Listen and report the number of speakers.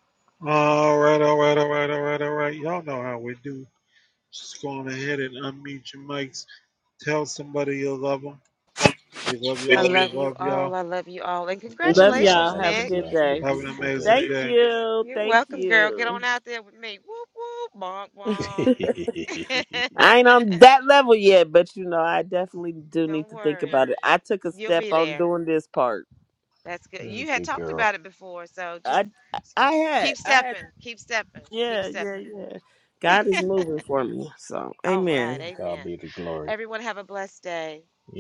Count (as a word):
four